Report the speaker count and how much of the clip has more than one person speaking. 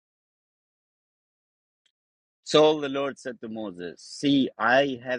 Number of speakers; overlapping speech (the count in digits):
1, no overlap